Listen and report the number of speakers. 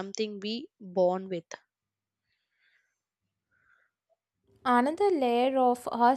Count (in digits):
2